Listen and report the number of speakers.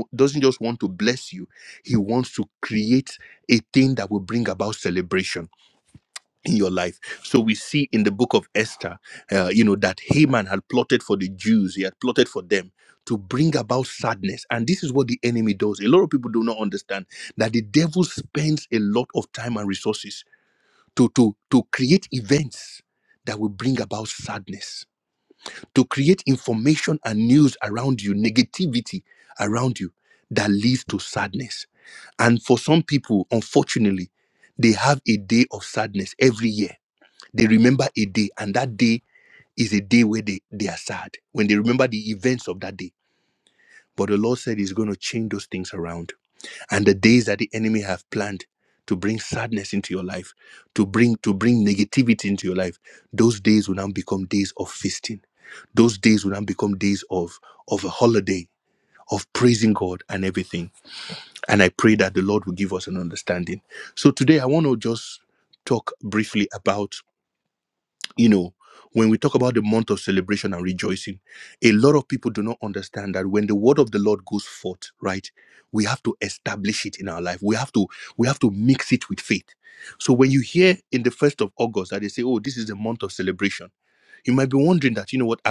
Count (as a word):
one